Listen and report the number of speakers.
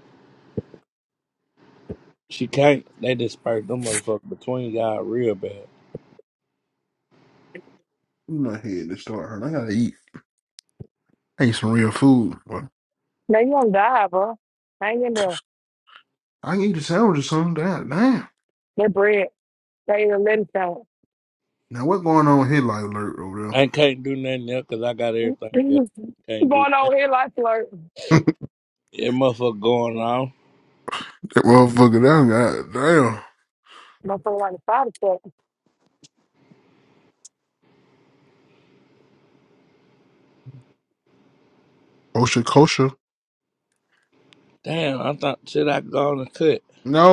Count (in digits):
3